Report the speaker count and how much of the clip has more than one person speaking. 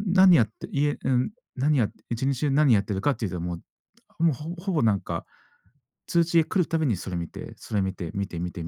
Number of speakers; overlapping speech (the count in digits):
1, no overlap